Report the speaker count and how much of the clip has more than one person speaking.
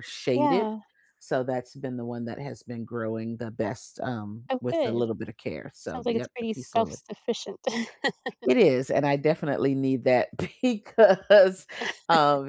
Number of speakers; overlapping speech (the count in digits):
2, about 15%